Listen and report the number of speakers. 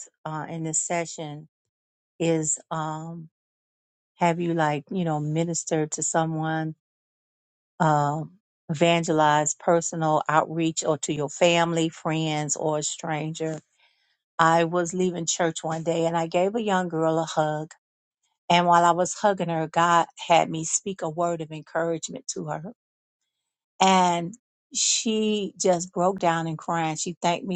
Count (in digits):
1